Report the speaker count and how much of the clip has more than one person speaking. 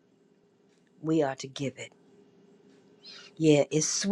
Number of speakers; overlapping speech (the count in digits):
1, no overlap